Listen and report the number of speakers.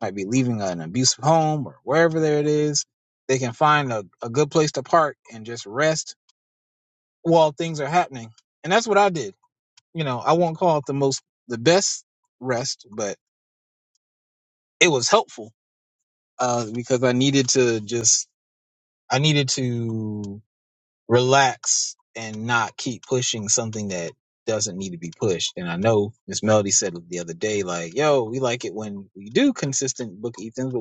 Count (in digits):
1